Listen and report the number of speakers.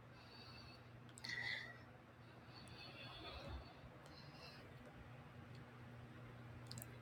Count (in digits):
0